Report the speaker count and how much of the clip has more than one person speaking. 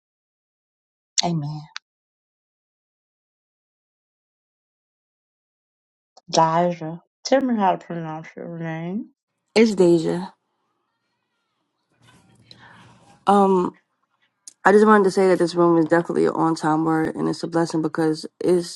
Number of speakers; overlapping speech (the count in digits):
2, no overlap